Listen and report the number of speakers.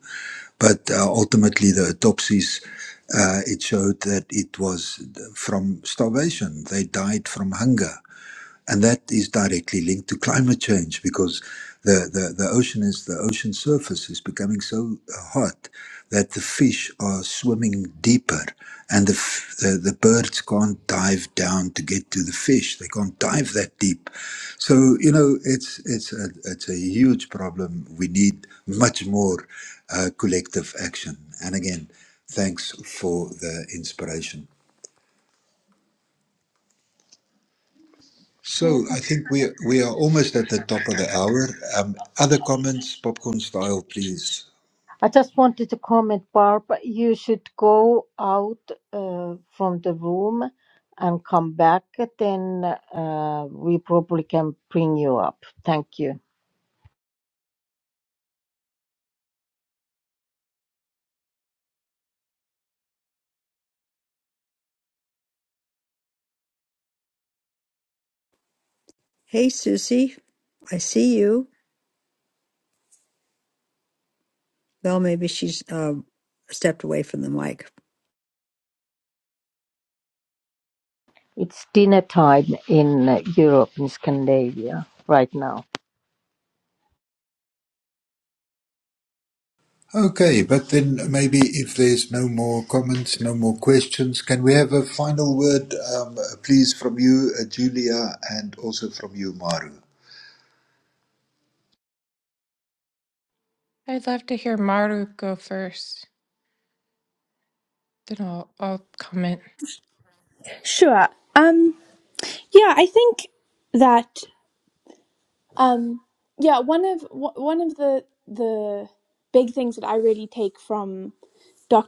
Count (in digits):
5